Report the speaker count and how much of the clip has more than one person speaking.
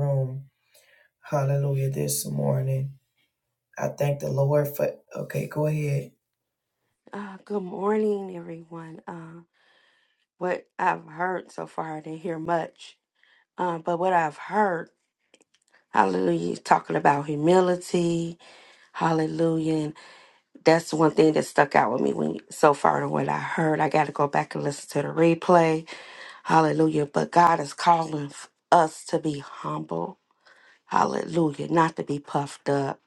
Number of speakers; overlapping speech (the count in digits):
2, no overlap